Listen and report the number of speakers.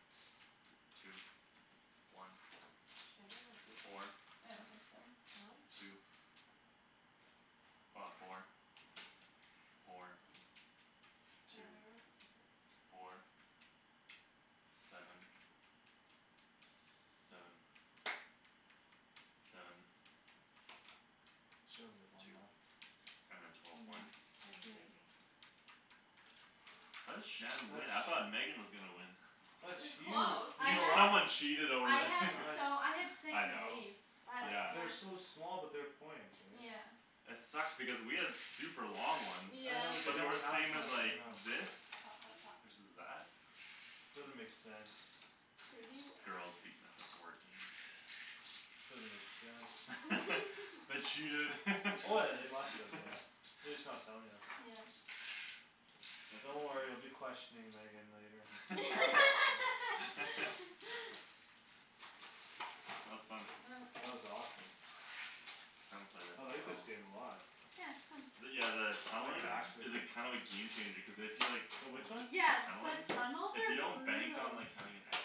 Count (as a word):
four